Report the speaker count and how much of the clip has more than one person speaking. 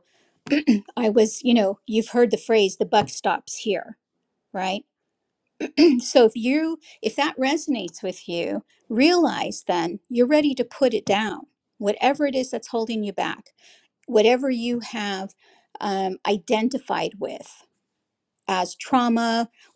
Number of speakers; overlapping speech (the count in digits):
1, no overlap